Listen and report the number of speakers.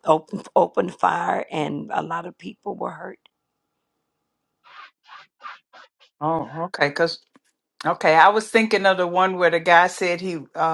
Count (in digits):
2